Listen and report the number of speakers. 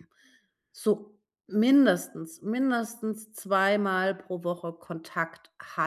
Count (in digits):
1